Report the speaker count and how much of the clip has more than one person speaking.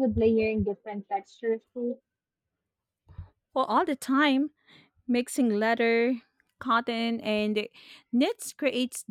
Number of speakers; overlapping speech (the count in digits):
2, no overlap